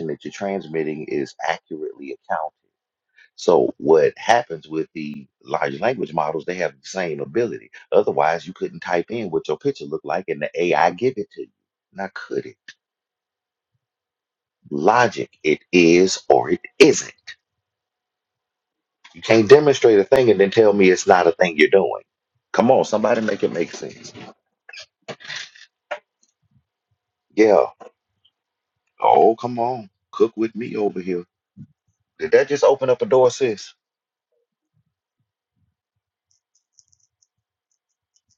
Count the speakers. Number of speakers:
1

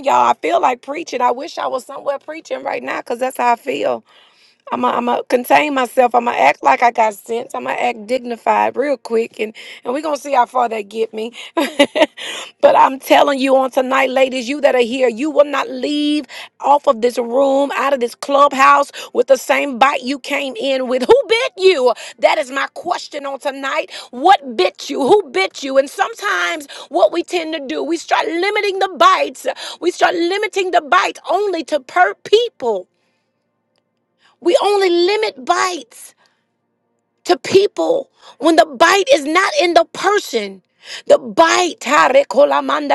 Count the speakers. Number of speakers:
1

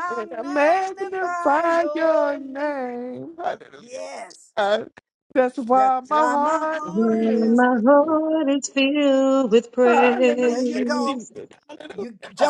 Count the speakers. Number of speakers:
3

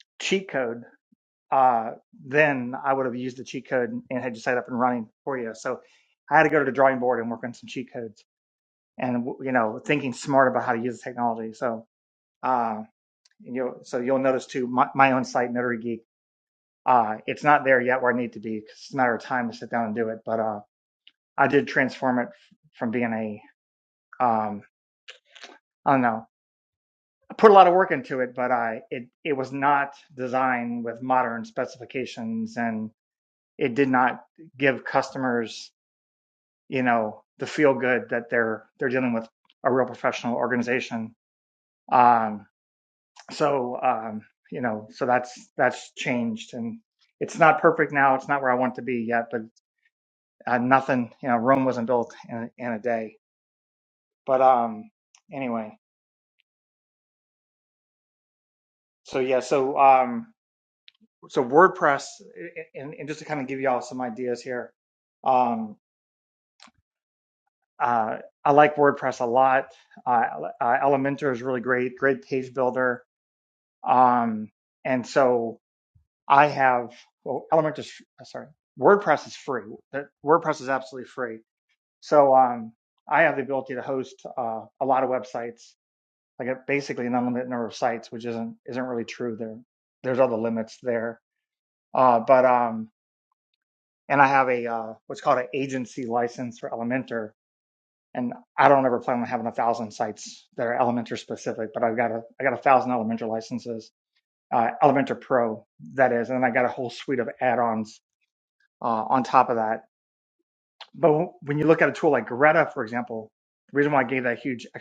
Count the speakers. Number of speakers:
1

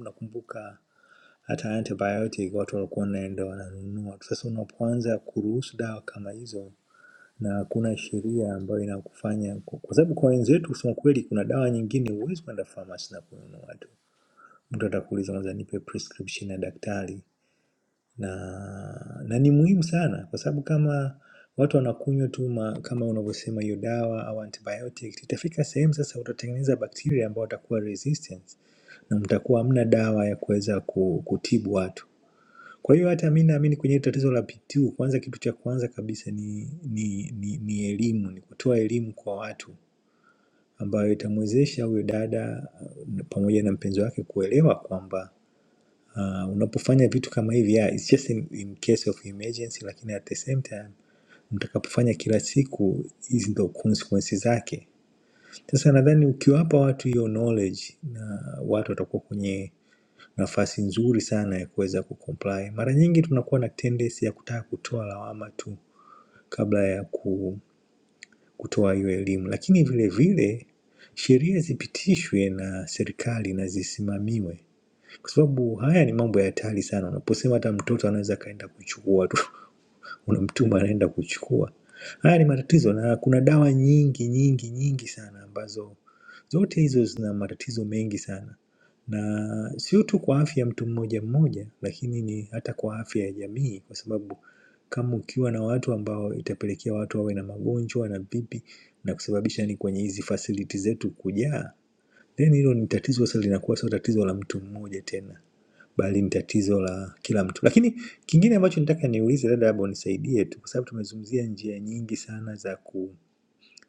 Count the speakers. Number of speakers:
1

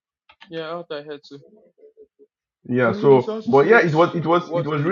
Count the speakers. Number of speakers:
2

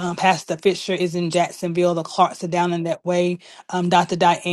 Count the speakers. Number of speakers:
1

